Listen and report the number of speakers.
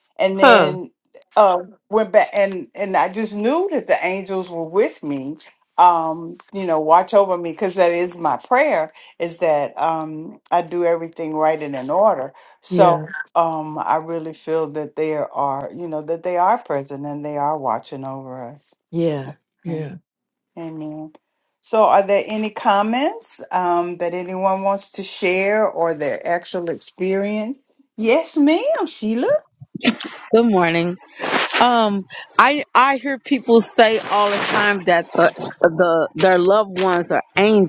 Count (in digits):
3